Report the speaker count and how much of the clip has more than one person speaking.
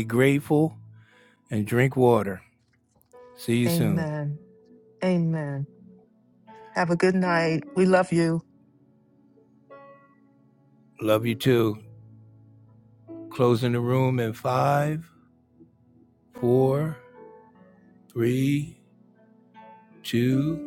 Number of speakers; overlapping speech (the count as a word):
two, about 2%